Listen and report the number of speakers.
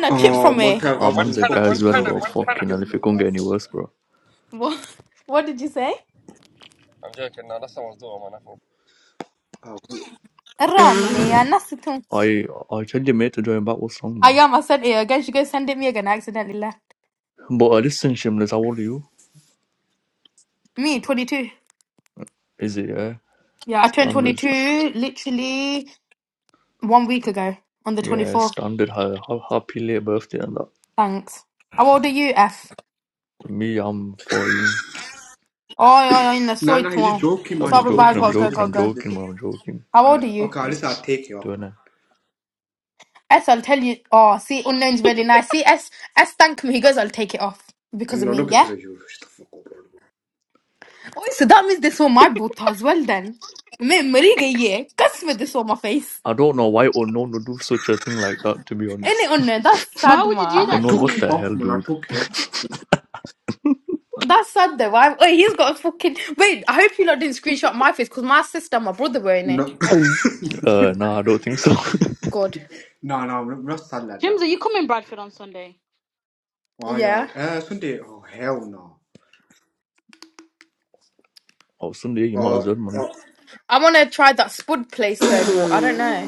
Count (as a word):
five